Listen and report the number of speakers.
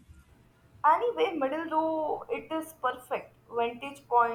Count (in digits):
1